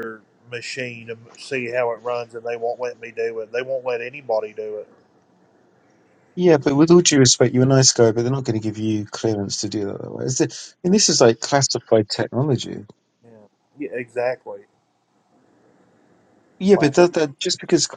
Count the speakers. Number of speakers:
2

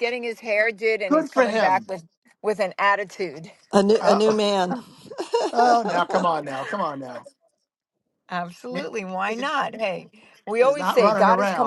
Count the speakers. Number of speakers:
3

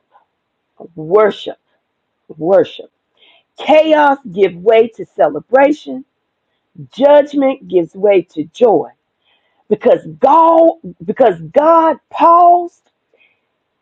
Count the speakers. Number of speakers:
1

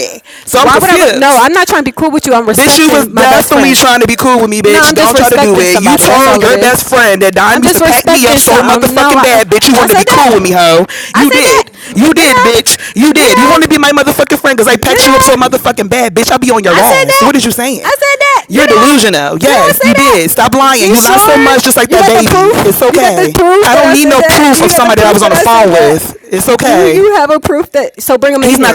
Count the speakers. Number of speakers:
2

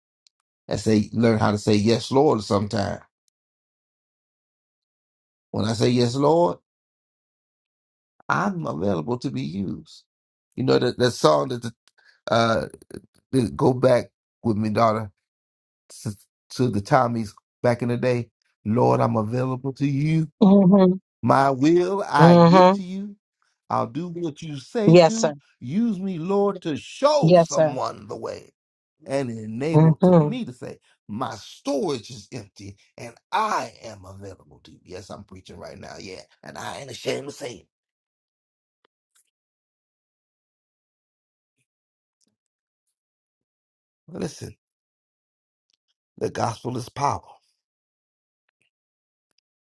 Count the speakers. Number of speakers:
2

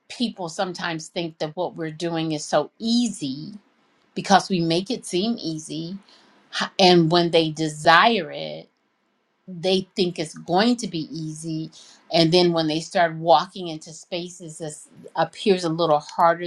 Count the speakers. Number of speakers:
1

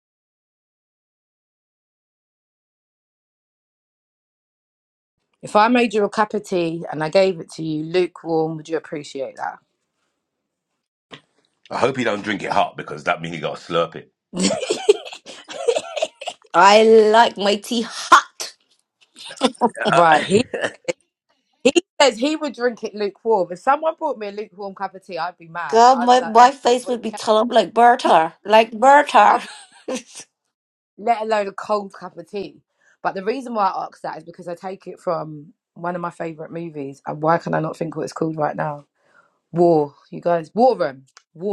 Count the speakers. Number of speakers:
3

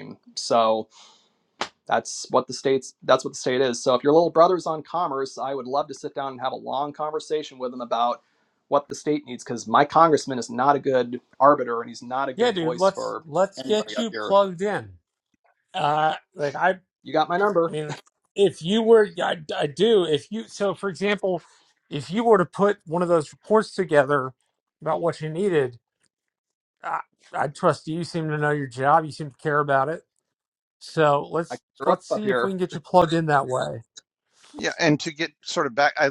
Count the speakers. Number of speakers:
3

